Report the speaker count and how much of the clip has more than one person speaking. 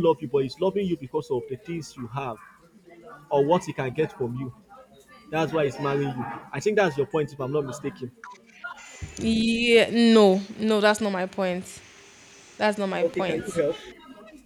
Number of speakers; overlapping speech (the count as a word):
two, about 5%